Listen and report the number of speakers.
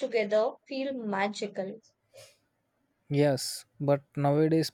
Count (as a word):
two